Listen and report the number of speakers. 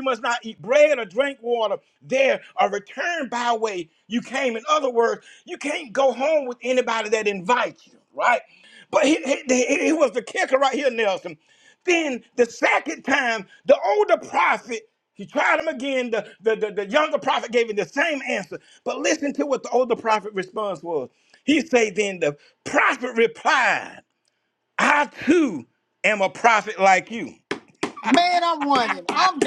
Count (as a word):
two